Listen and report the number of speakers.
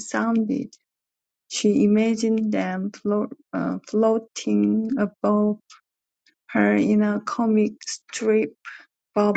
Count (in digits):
1